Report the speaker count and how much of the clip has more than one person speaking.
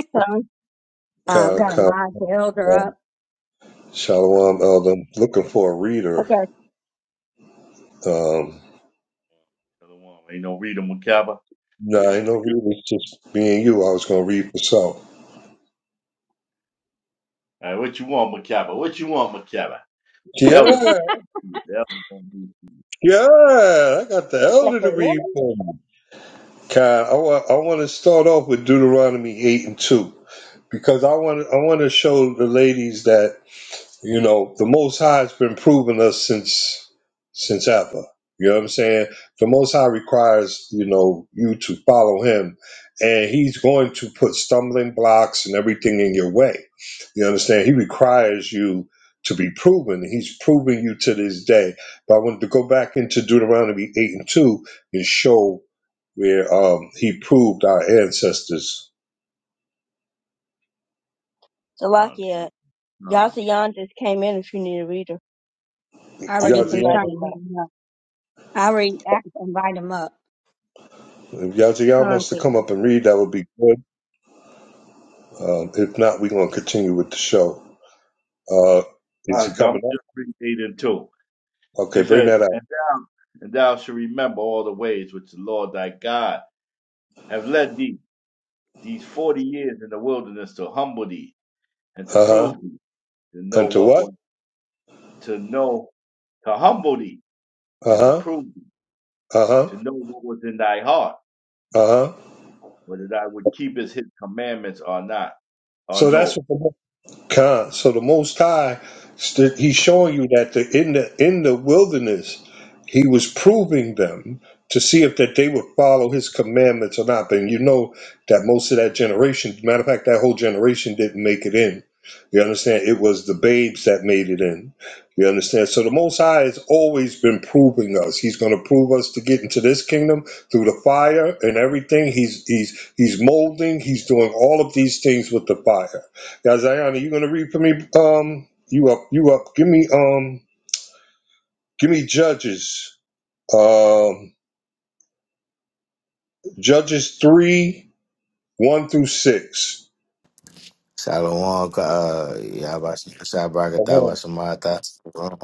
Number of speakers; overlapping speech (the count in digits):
5, about 5%